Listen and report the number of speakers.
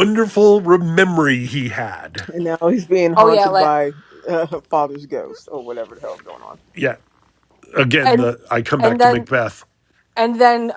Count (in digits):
3